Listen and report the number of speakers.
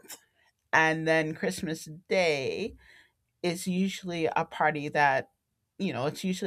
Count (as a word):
one